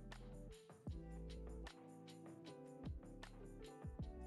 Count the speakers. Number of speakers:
0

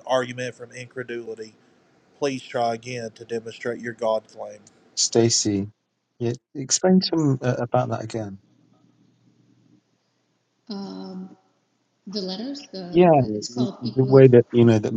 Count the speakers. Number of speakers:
3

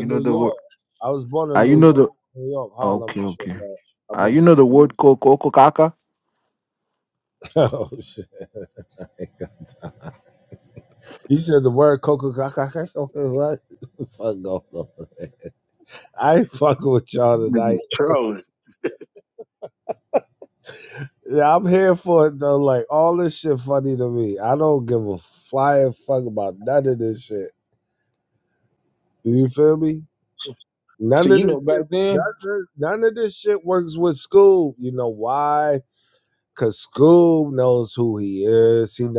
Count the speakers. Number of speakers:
3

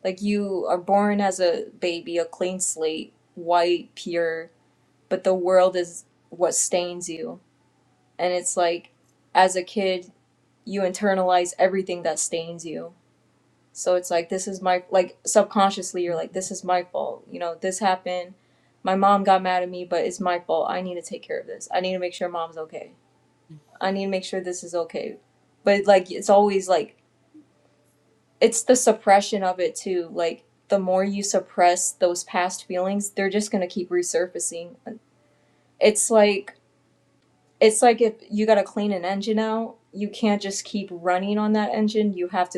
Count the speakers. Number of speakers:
1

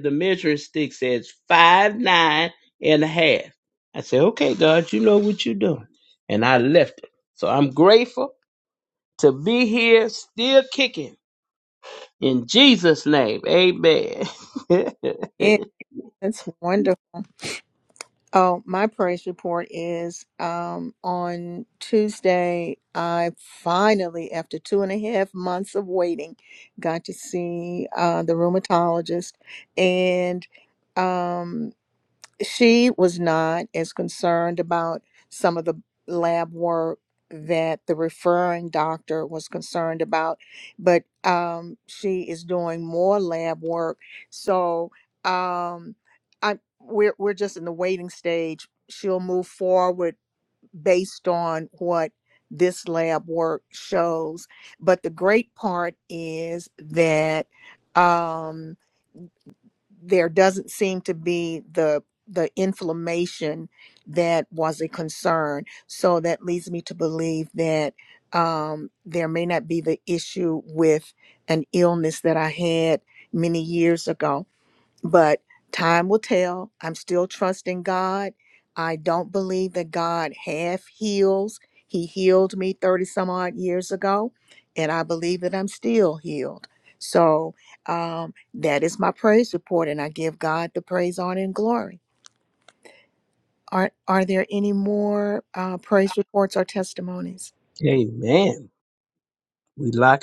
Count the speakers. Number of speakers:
2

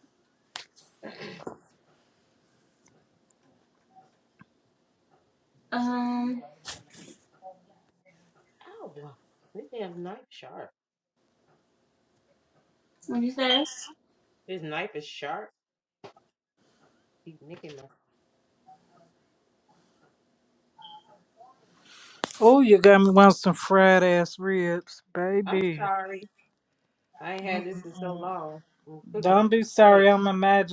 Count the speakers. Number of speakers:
3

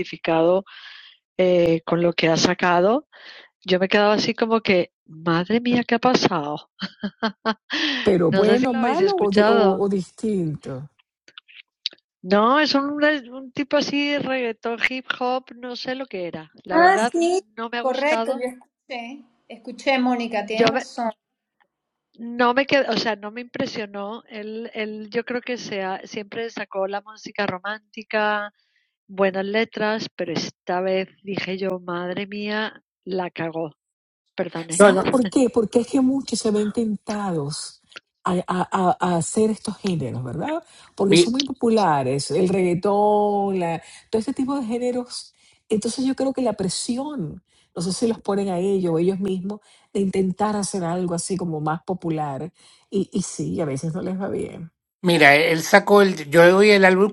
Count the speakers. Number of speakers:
4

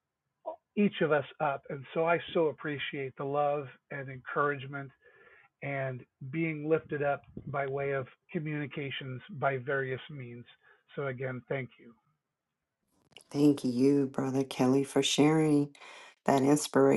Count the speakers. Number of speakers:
2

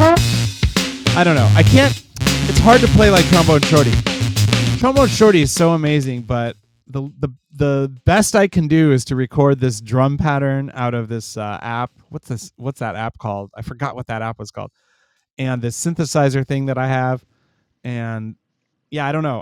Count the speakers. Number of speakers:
1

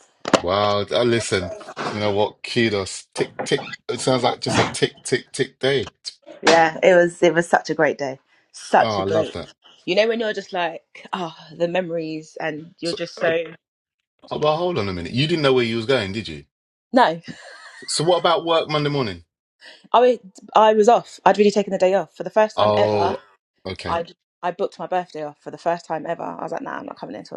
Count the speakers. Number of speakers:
2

